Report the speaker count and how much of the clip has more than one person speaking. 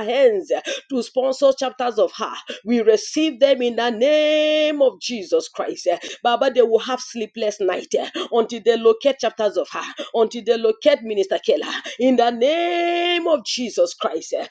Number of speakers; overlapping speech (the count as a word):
one, no overlap